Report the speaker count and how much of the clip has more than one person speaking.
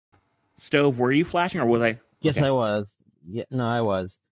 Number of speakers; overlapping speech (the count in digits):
2, about 4%